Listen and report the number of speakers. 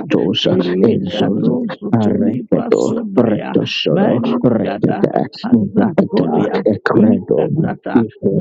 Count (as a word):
two